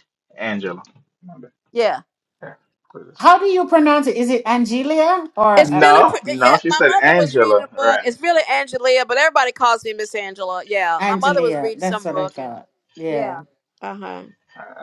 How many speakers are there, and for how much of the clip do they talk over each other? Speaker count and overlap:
3, about 28%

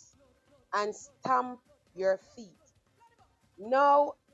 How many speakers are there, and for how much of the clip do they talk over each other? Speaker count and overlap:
1, no overlap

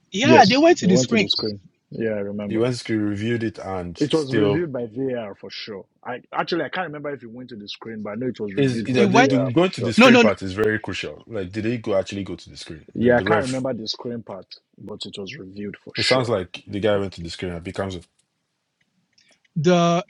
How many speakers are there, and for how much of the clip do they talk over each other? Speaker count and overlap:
3, about 23%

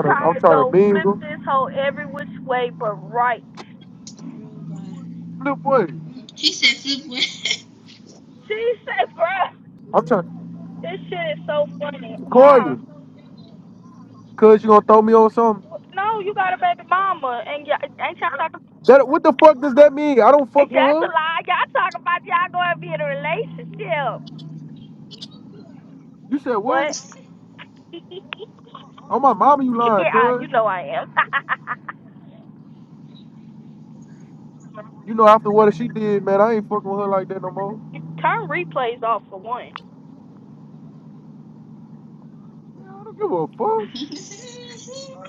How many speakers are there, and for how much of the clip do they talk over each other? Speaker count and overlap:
3, about 7%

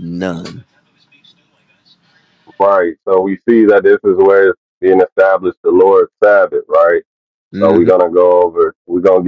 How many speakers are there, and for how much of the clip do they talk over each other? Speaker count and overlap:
2, about 3%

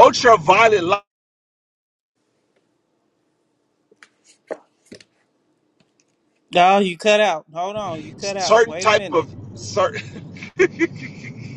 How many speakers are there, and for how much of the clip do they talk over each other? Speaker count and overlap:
2, about 7%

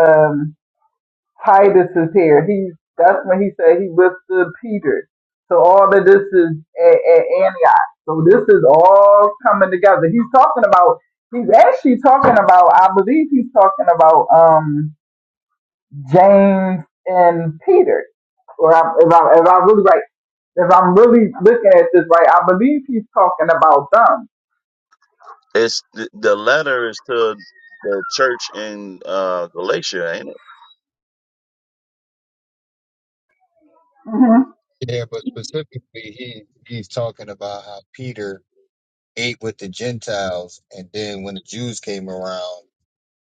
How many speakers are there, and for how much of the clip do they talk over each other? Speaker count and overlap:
3, no overlap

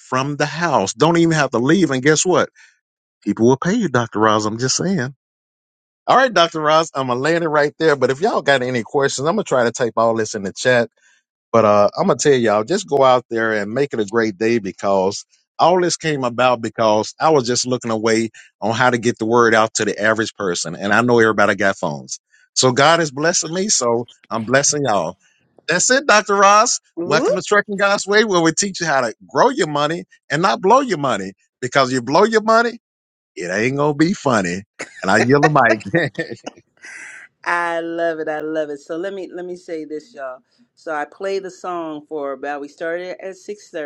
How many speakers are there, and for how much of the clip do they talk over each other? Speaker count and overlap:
2, no overlap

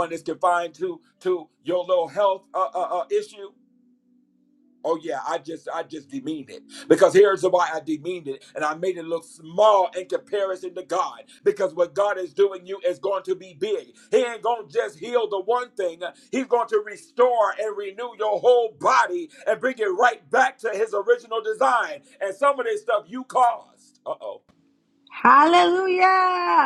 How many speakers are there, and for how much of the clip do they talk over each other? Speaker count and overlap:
2, no overlap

